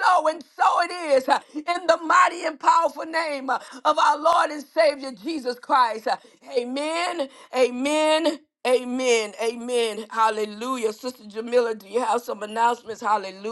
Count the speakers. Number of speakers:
1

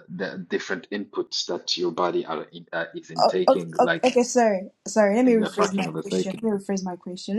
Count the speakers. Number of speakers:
2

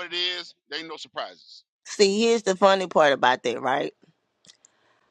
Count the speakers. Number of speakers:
2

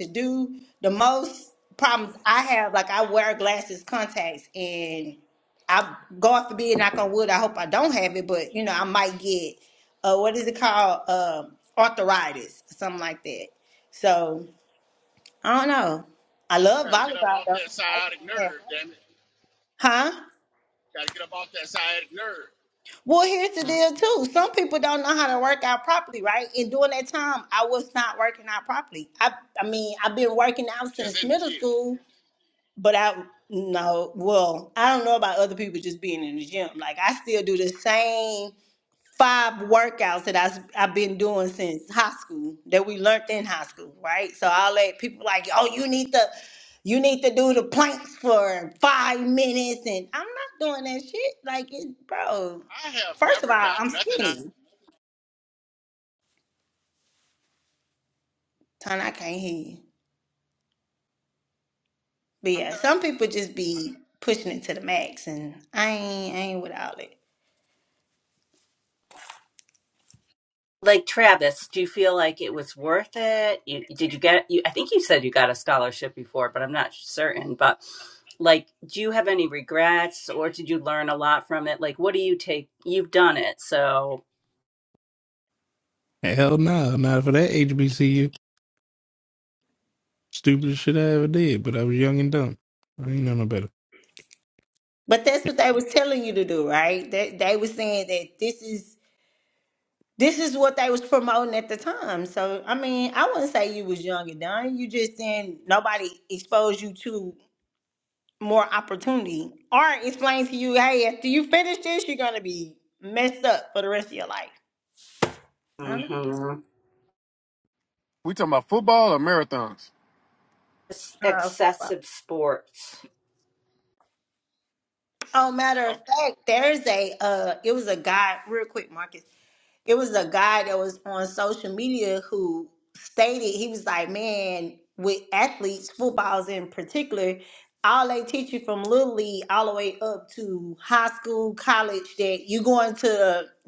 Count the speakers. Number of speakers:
5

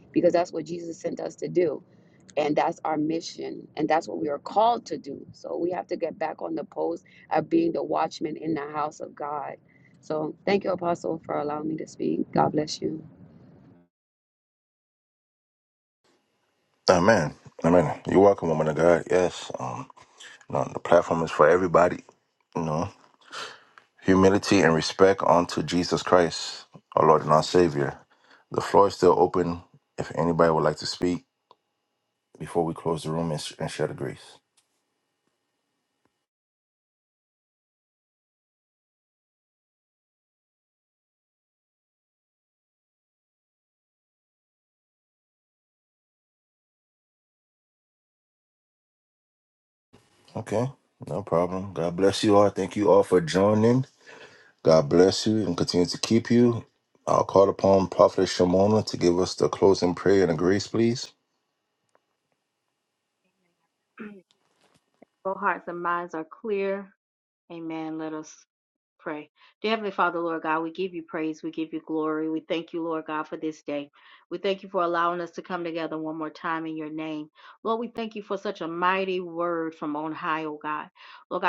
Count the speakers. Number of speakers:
3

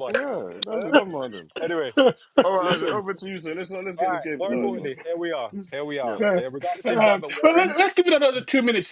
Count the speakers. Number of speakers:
3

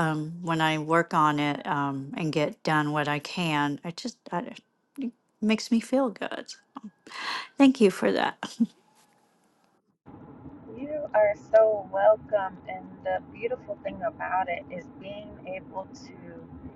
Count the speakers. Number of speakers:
2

